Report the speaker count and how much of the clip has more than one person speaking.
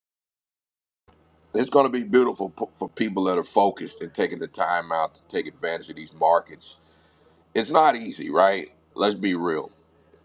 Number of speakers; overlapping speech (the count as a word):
one, no overlap